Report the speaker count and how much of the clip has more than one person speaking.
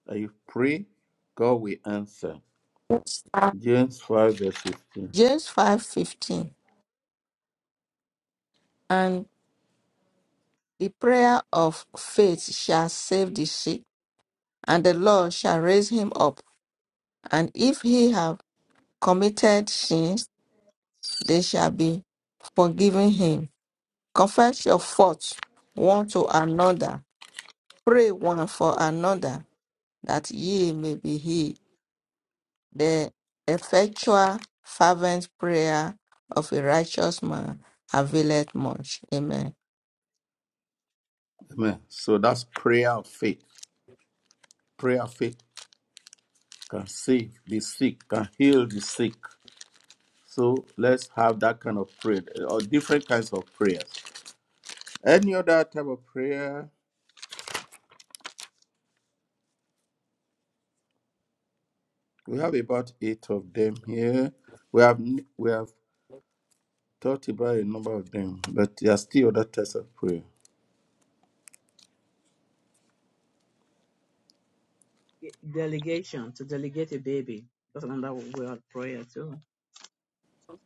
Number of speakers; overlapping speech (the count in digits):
3, no overlap